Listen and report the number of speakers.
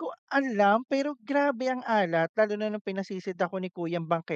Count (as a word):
one